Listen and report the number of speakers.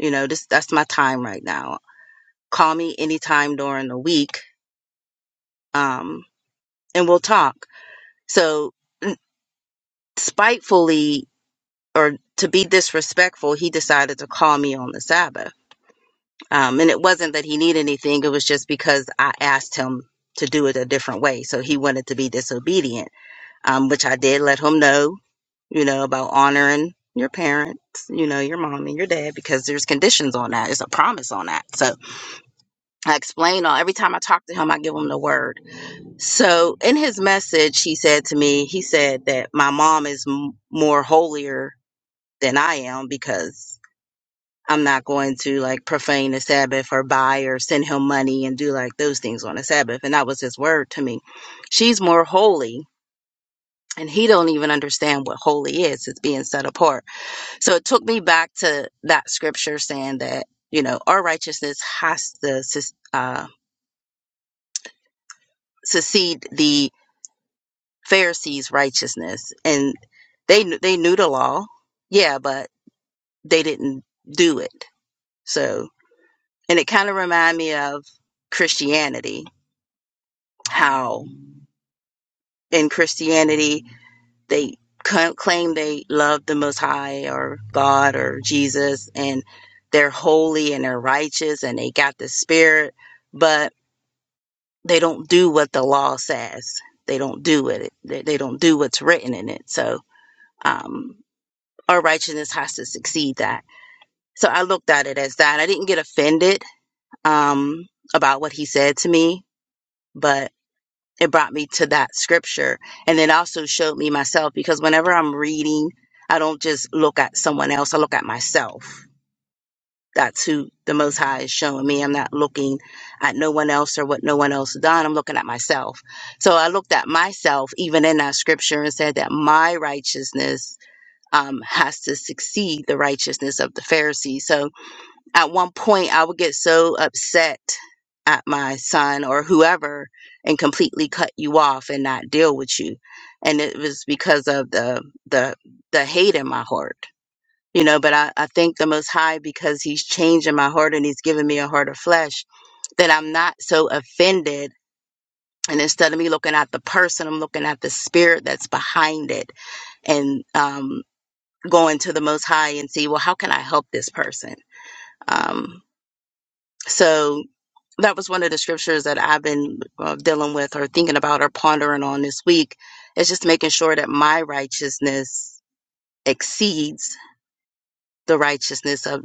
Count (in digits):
1